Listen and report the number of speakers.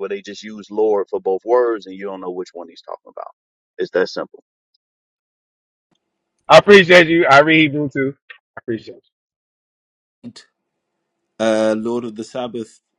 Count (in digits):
3